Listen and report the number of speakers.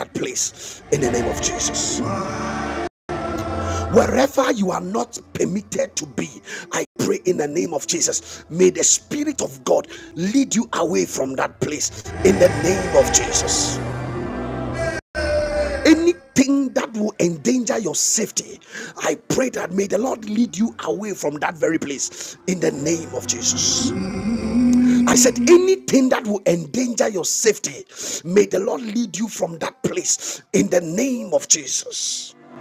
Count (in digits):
1